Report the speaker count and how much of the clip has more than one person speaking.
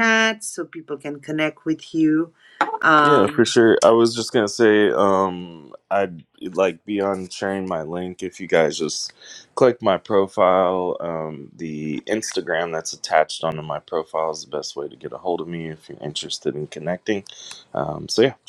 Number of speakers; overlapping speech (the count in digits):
2, about 2%